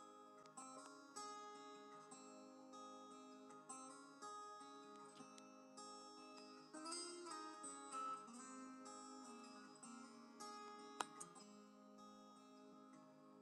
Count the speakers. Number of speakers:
0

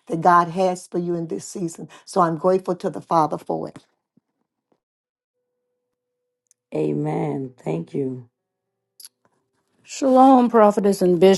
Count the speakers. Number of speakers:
3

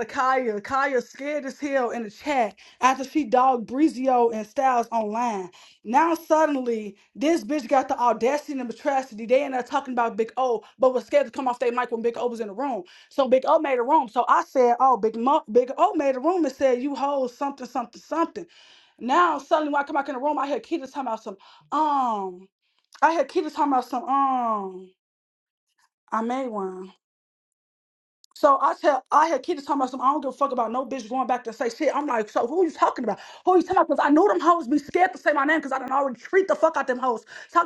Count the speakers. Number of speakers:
1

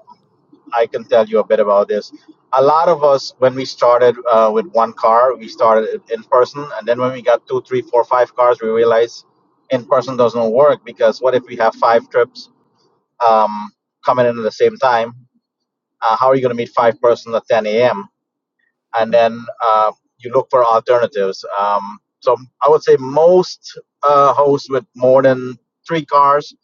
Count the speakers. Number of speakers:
1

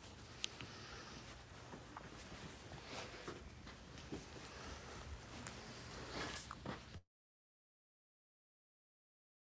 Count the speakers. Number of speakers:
0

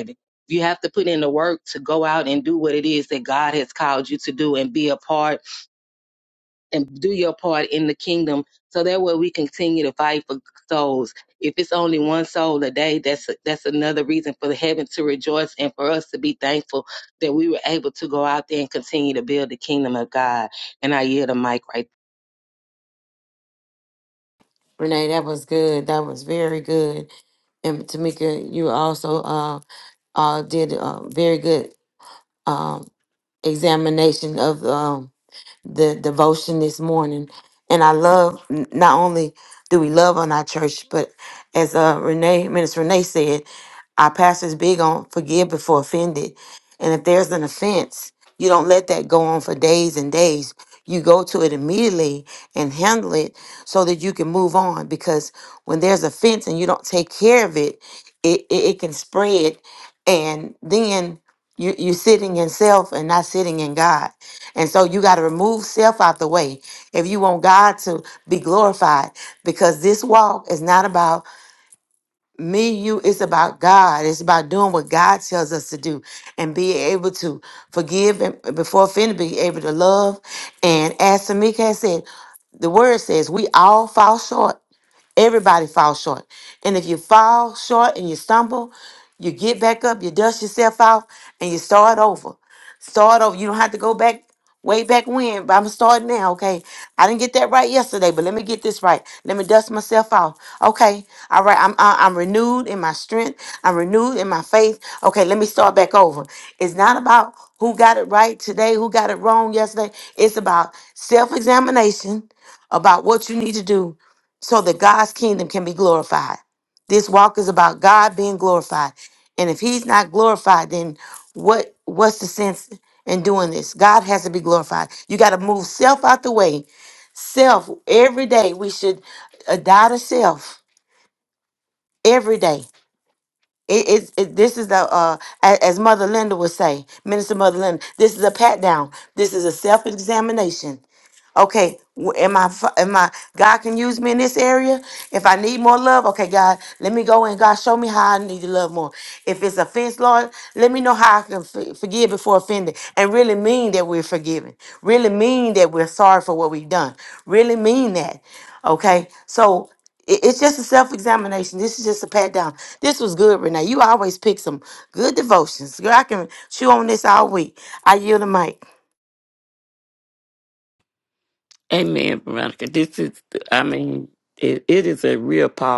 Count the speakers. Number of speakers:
3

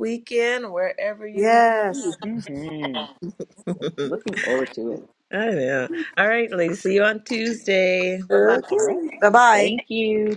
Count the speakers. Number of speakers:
3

